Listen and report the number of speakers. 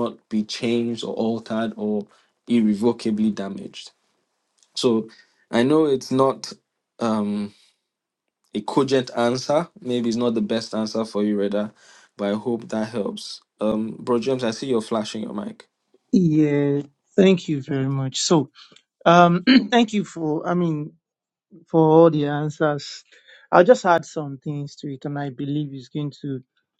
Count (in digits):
2